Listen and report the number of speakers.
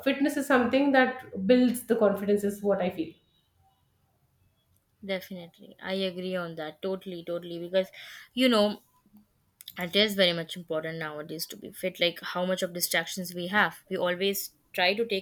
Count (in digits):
2